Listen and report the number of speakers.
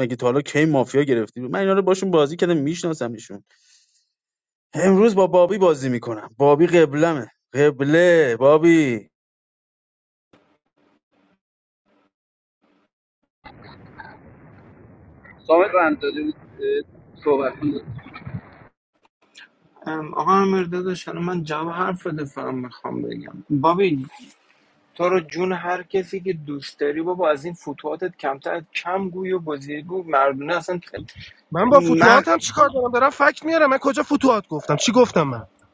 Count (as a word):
four